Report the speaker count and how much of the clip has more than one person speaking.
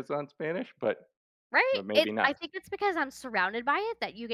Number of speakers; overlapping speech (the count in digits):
2, about 13%